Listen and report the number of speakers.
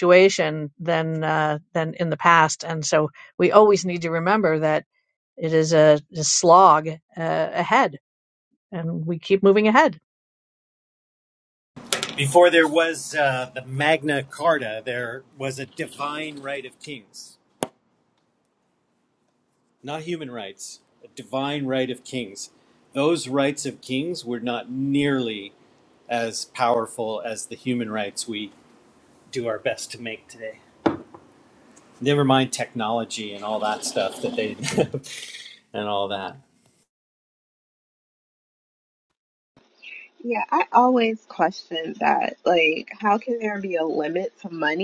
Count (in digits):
3